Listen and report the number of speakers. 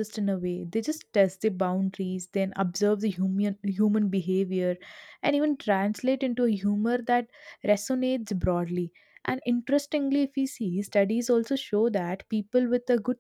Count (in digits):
1